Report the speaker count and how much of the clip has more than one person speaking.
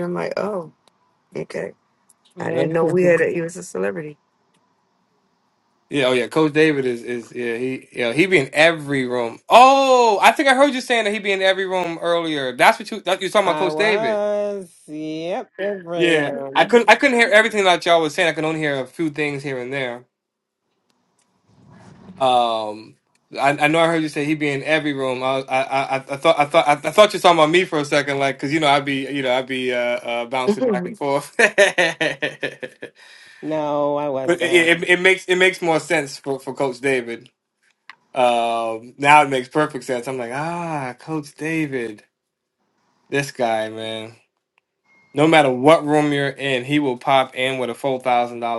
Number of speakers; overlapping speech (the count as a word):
three, about 5%